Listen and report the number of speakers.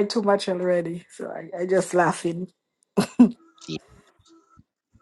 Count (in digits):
1